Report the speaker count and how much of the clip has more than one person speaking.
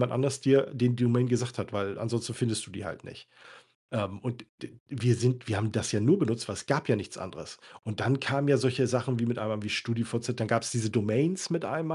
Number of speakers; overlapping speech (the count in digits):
1, no overlap